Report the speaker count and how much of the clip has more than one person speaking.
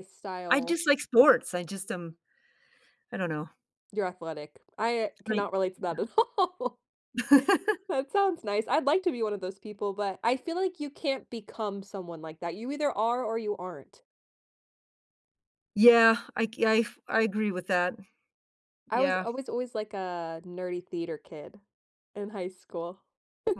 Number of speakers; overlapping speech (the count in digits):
2, about 3%